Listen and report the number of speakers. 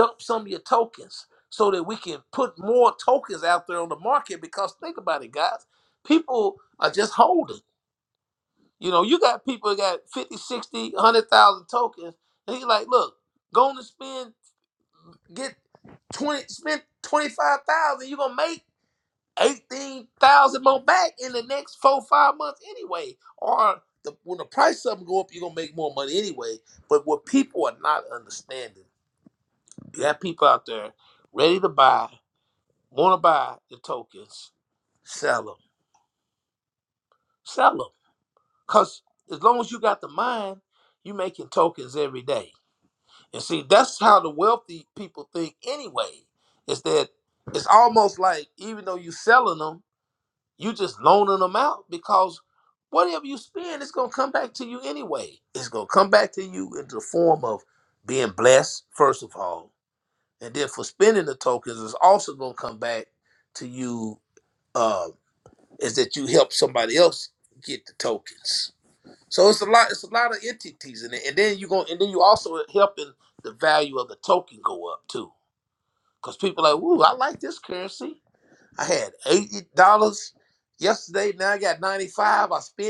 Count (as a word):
one